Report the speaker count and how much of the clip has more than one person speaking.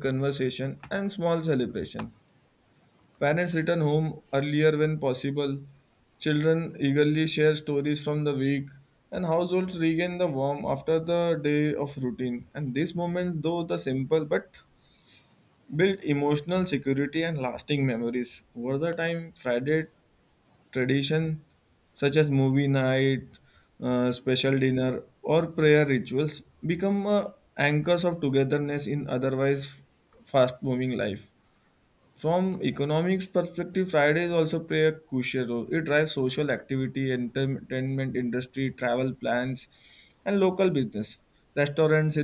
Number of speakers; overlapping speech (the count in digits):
1, no overlap